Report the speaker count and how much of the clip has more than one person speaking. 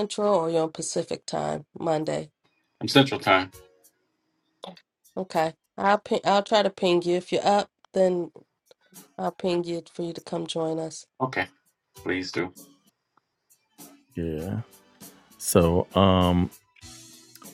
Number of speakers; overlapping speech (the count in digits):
3, no overlap